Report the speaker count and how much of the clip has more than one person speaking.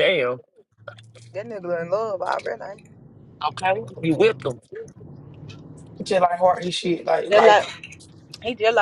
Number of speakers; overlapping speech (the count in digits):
3, about 5%